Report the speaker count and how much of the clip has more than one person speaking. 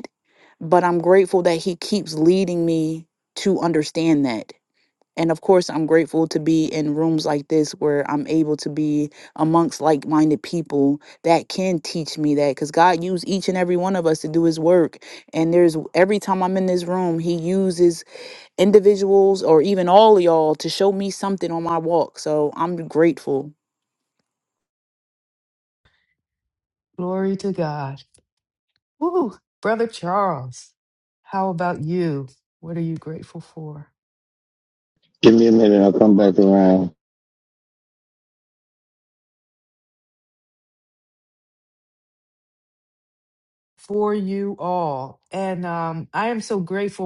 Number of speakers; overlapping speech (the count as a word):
three, no overlap